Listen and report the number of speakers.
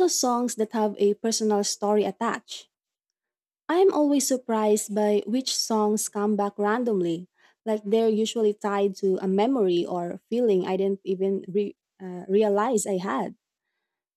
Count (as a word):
one